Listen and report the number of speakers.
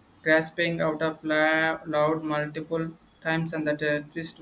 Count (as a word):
one